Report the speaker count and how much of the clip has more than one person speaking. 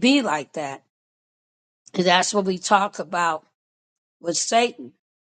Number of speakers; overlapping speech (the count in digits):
1, no overlap